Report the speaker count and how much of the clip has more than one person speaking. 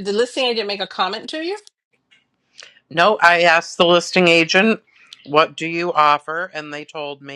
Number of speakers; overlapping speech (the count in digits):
2, no overlap